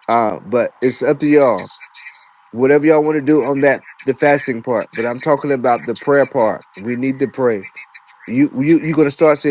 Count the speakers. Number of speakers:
1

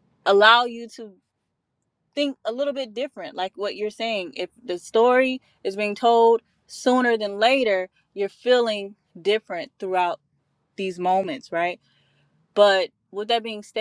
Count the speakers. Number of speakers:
1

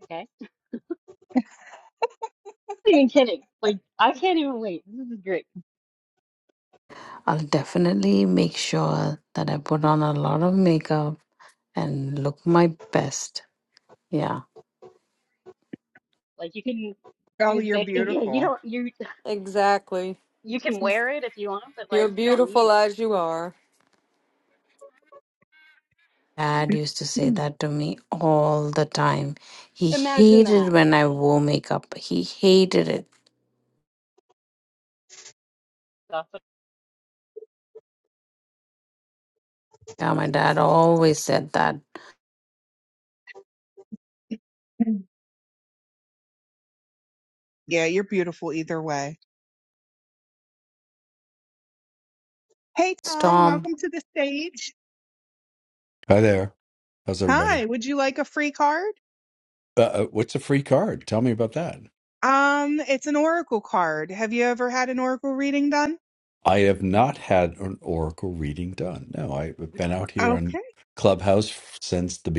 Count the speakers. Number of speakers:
5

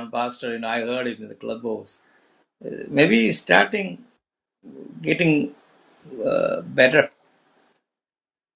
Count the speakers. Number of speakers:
1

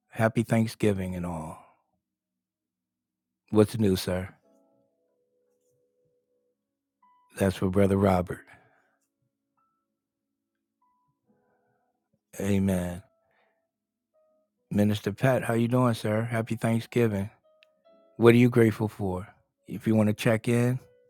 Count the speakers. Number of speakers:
1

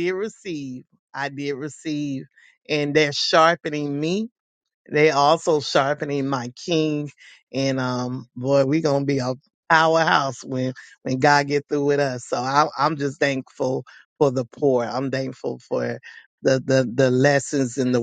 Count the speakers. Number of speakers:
1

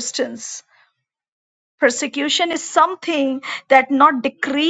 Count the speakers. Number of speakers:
1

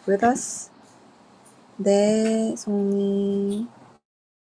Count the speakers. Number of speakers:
1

